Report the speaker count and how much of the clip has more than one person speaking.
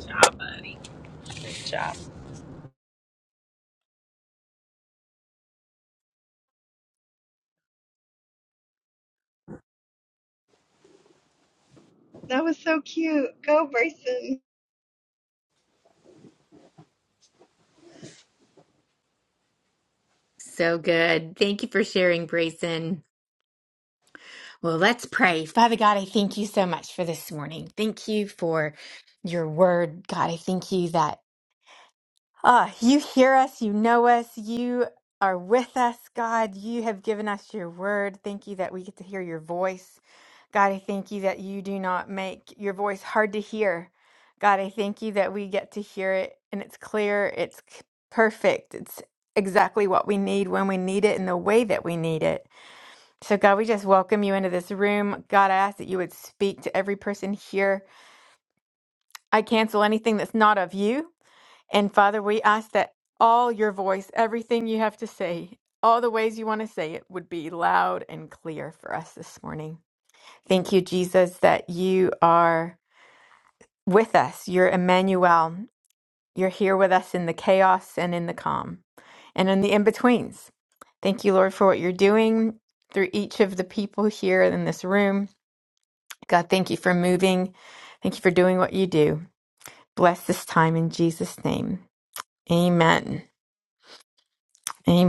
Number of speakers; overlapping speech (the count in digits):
3, no overlap